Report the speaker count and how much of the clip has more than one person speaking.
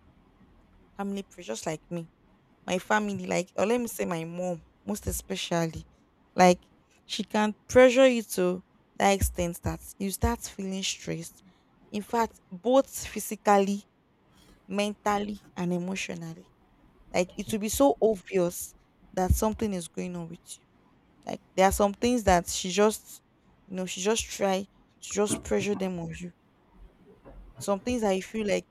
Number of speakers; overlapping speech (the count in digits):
1, no overlap